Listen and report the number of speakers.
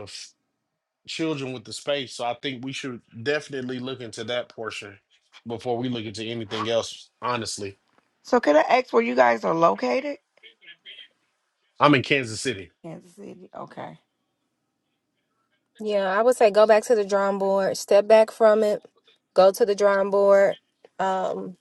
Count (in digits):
3